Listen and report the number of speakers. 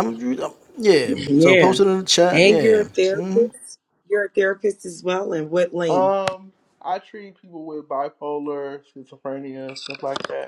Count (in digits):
3